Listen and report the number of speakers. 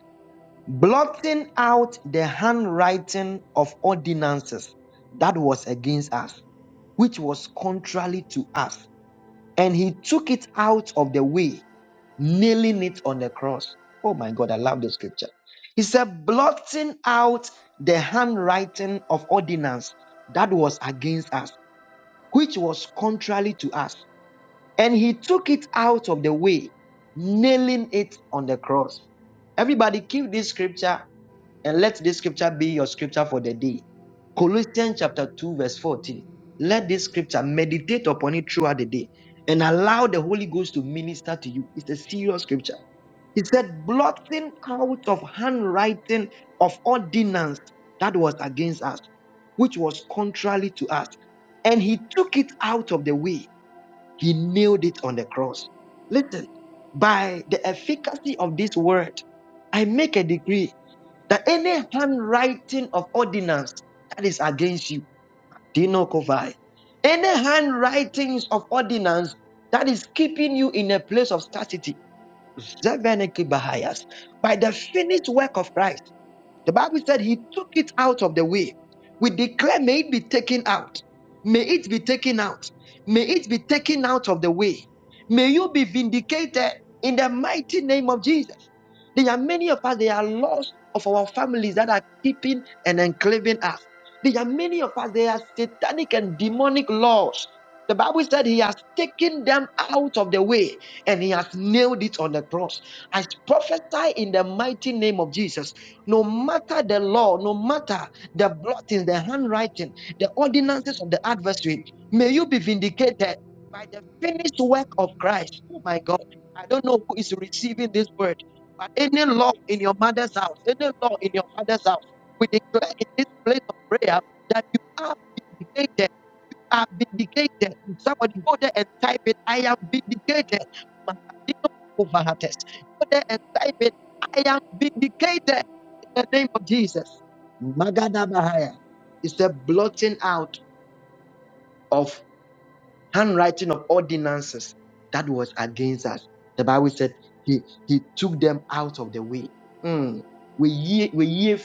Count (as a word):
one